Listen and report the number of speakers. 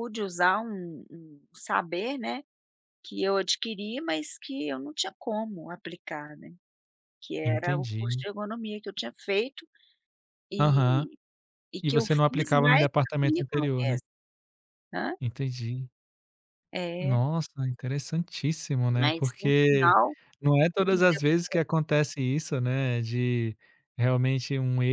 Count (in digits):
2